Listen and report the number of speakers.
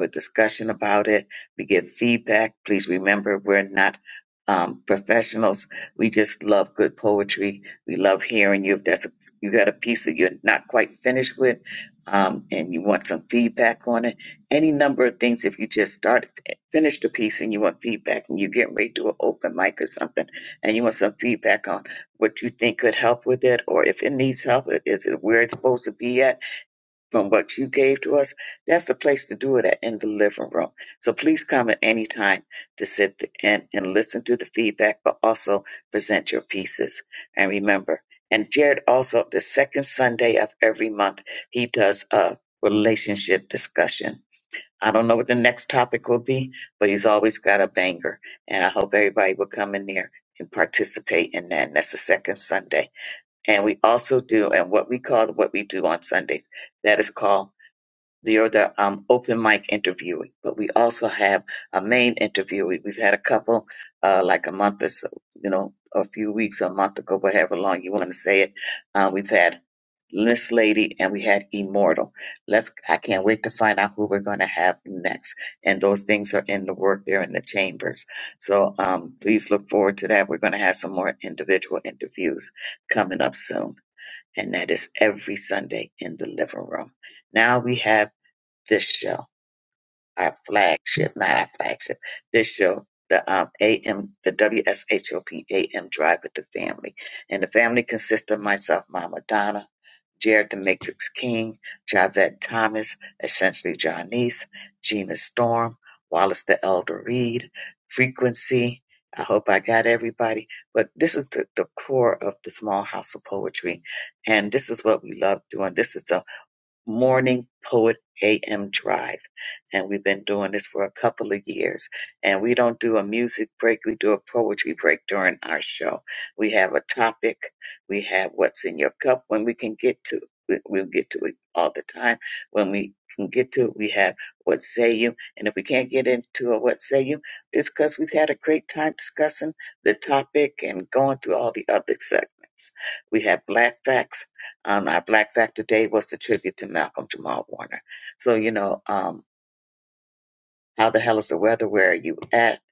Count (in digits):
1